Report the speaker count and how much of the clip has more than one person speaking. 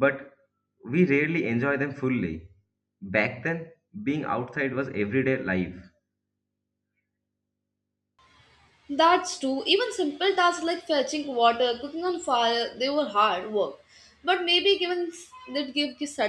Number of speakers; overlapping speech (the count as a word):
two, no overlap